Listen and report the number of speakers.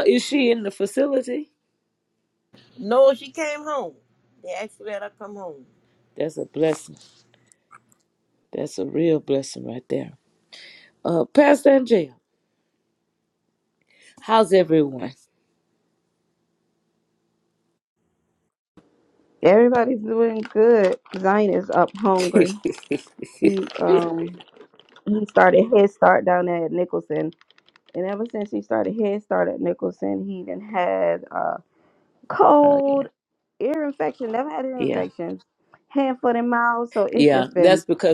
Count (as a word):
three